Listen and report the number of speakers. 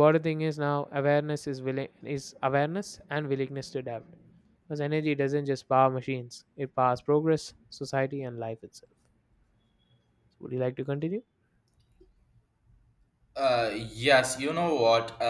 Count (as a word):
two